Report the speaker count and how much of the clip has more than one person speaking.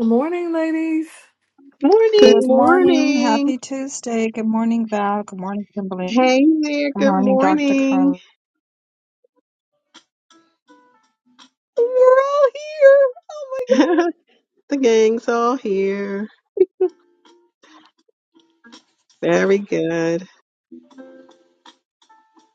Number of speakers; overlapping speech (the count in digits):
4, about 13%